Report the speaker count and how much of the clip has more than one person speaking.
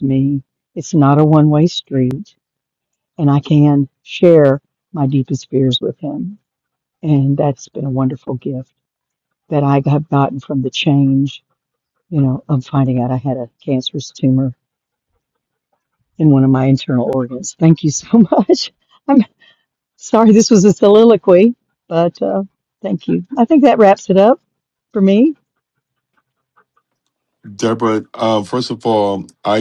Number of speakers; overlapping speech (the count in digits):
2, no overlap